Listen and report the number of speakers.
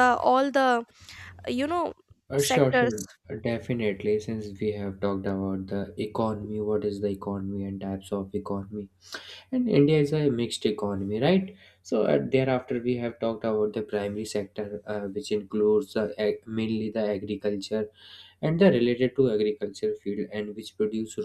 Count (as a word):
two